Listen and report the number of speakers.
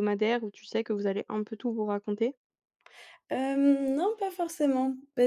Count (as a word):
two